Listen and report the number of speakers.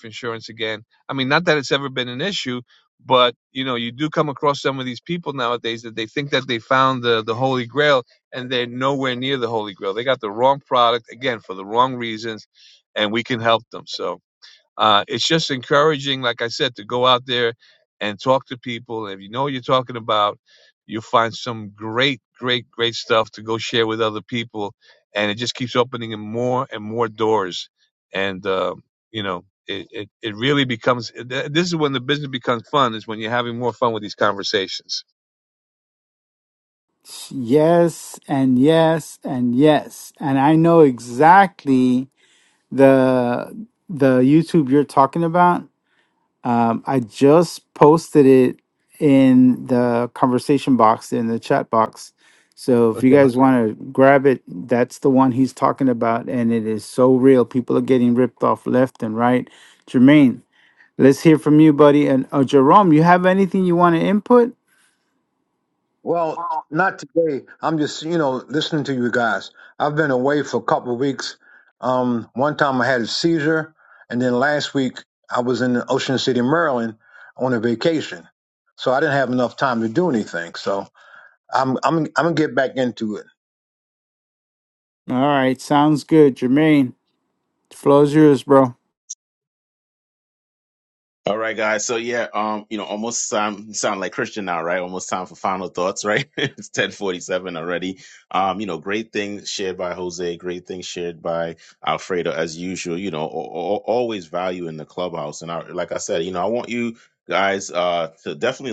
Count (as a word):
four